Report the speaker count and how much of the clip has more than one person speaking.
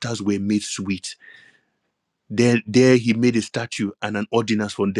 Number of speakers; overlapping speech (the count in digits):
1, no overlap